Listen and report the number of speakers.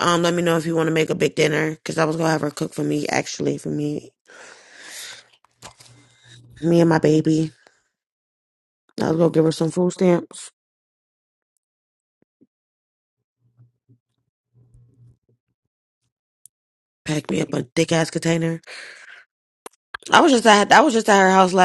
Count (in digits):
1